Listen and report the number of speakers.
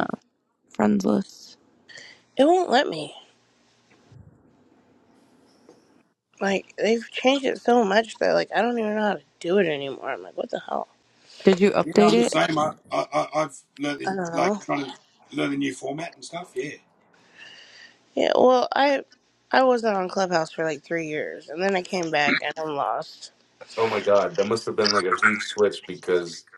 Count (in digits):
4